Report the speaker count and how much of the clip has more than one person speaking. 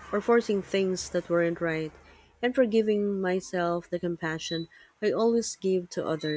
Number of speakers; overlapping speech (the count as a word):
one, no overlap